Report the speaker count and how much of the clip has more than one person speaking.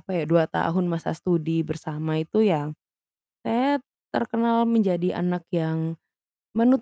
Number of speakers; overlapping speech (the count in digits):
1, no overlap